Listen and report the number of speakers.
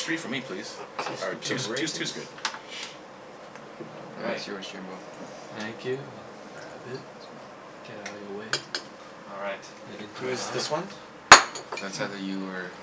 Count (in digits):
4